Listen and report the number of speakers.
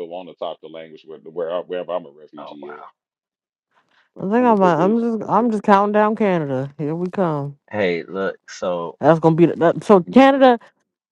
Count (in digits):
3